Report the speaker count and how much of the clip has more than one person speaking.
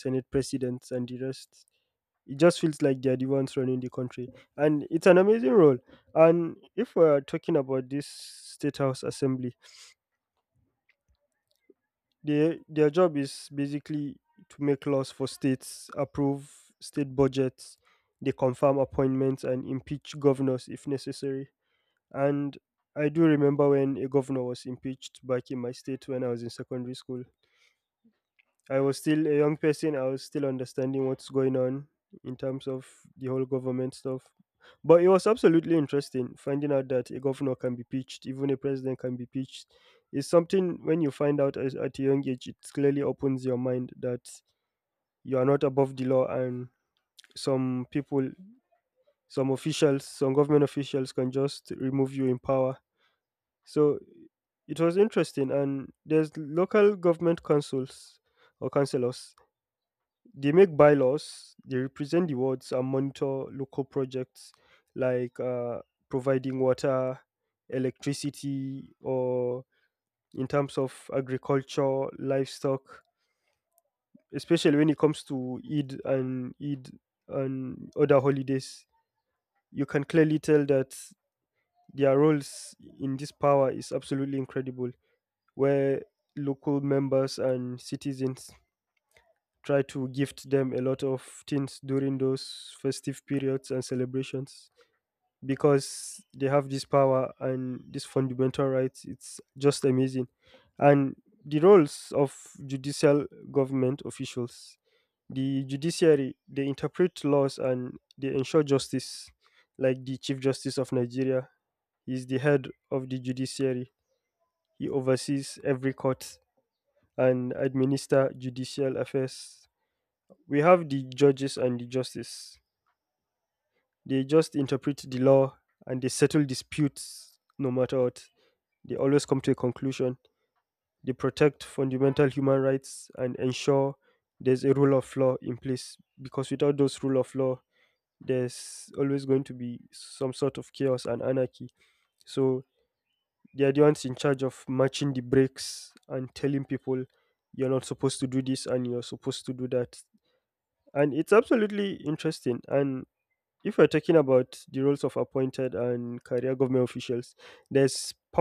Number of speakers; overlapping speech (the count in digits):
1, no overlap